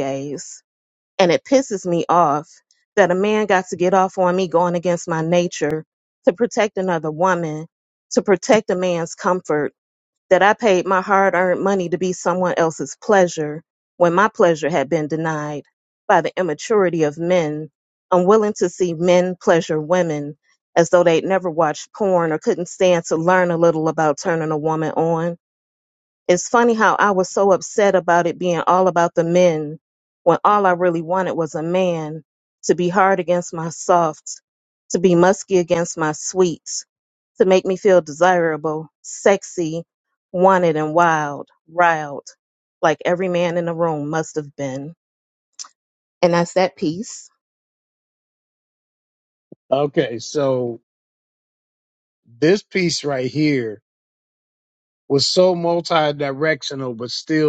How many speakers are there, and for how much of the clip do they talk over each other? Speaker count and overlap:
two, no overlap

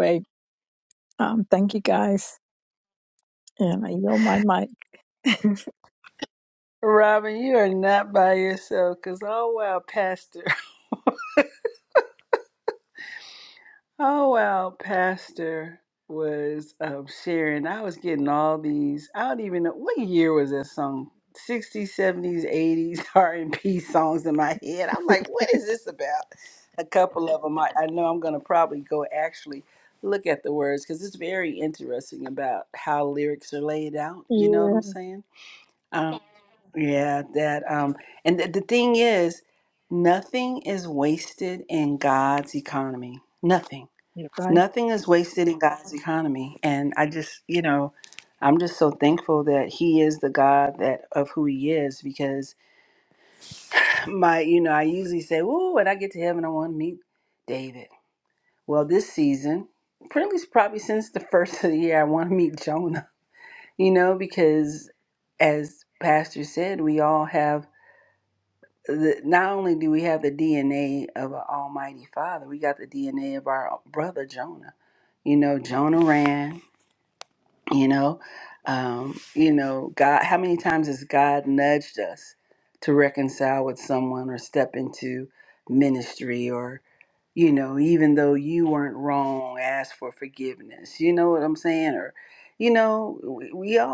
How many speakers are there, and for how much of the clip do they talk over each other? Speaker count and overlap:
two, about 1%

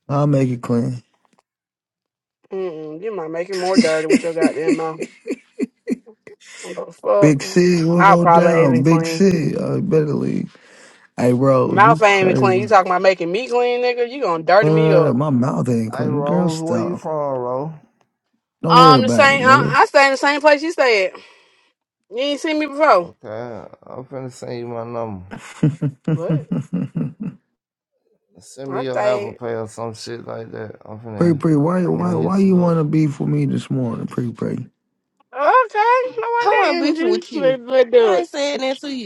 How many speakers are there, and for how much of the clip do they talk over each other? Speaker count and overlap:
four, about 23%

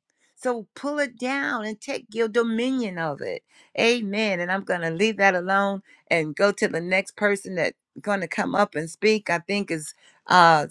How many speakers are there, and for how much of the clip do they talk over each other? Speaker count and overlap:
one, no overlap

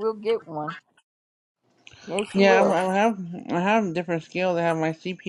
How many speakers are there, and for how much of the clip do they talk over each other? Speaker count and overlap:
two, about 9%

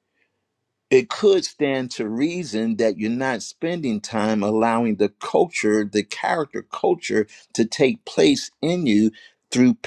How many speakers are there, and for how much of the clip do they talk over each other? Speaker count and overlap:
one, no overlap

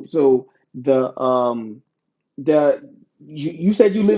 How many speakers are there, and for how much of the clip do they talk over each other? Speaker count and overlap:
one, no overlap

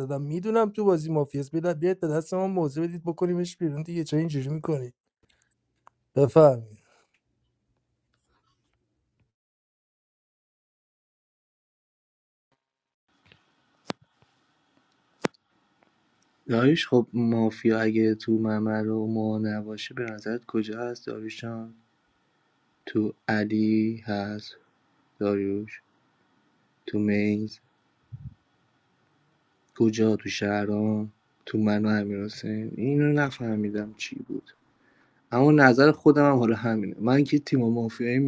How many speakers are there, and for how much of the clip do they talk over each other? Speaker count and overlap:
two, no overlap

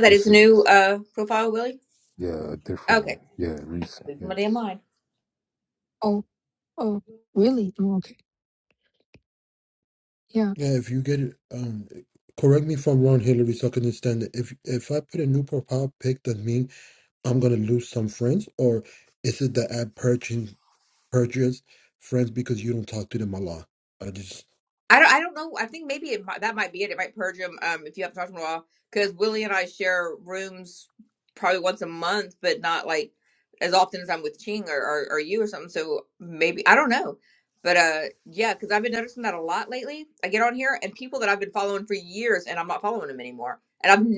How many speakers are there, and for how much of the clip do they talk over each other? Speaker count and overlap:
four, about 3%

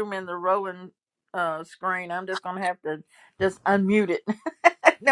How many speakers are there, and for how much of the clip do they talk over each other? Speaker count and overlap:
one, no overlap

